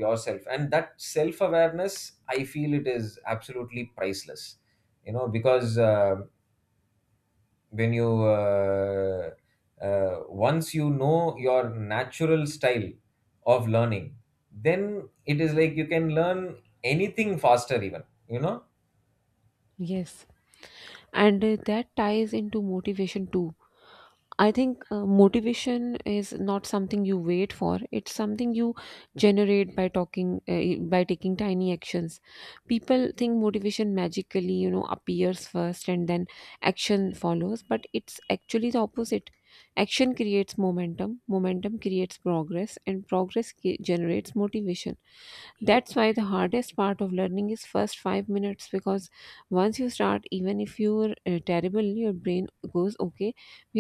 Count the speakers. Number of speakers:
2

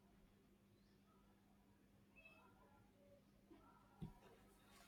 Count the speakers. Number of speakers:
0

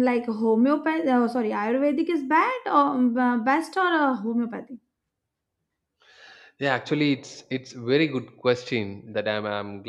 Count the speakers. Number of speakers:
2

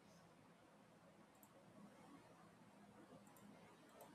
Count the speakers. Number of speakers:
0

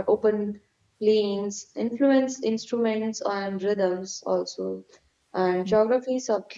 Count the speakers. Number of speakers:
1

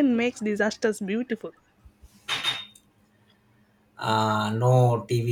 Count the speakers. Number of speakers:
2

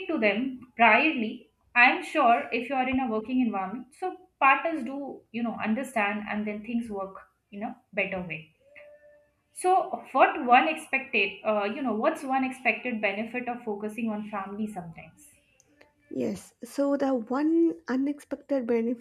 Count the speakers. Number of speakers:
2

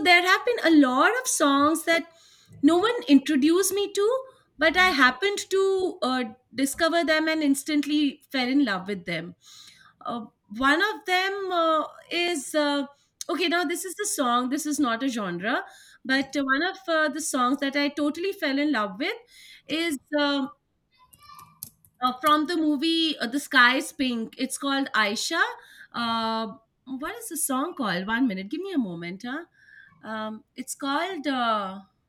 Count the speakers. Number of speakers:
1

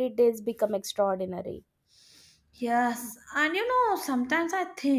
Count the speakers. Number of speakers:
2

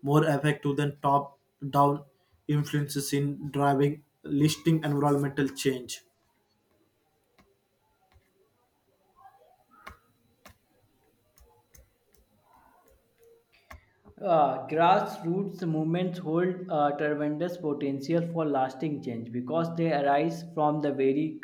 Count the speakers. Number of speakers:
2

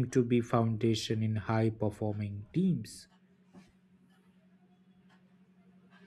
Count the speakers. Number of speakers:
1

